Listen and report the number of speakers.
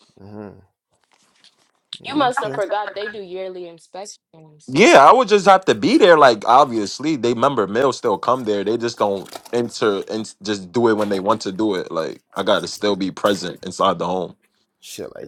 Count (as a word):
three